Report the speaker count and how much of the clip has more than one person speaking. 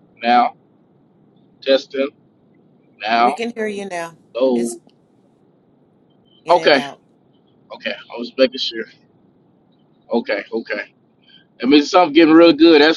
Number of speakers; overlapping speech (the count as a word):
two, about 5%